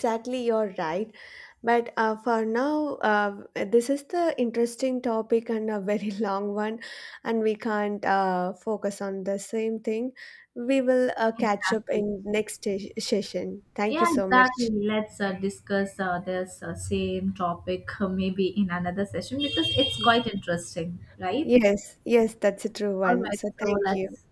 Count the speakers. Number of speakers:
two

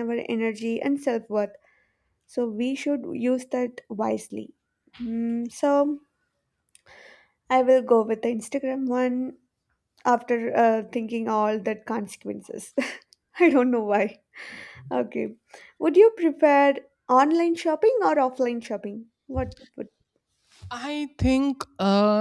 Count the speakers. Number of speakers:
two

